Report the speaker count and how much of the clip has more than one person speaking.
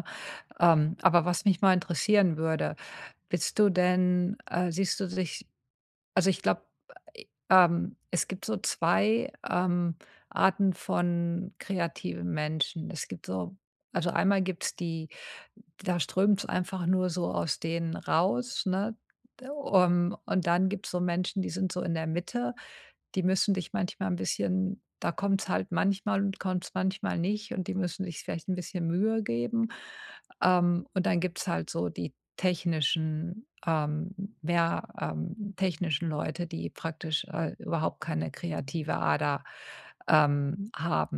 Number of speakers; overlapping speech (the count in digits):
1, no overlap